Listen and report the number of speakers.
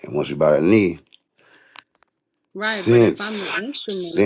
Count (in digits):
2